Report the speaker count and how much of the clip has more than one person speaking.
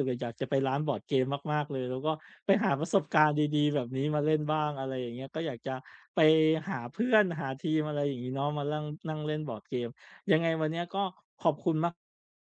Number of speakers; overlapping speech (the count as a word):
one, no overlap